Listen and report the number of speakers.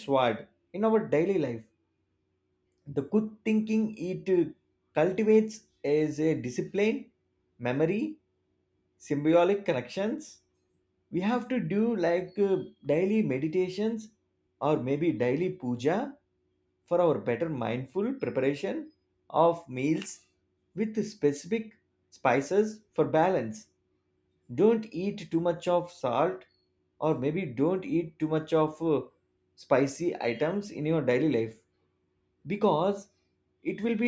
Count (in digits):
1